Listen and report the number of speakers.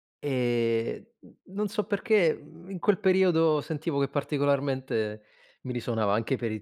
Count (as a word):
one